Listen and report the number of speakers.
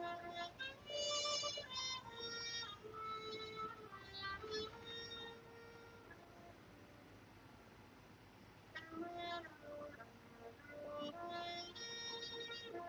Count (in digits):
0